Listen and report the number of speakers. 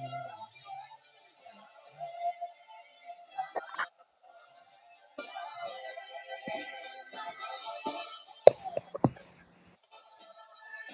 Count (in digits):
0